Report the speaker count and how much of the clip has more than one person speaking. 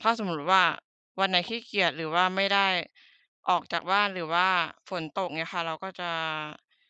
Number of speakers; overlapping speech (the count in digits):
1, no overlap